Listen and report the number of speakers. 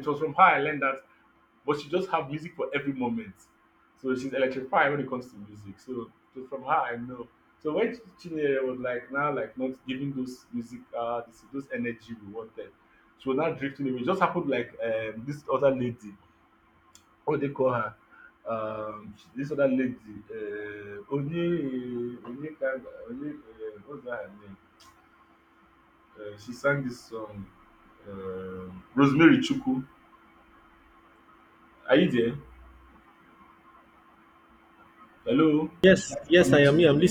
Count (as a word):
two